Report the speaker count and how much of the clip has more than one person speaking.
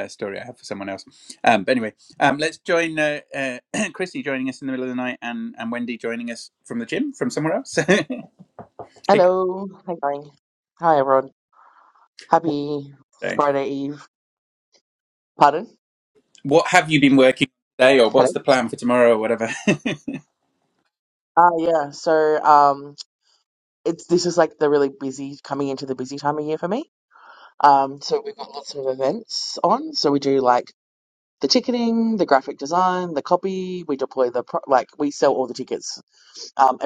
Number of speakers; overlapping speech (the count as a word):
two, about 1%